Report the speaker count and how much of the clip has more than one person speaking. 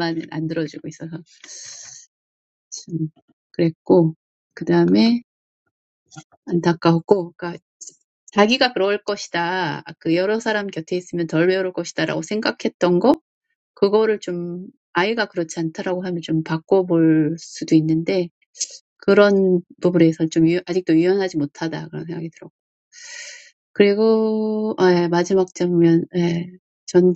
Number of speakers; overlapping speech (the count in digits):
1, no overlap